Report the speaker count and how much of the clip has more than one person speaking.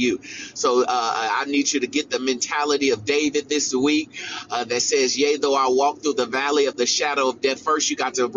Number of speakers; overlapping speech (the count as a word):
one, no overlap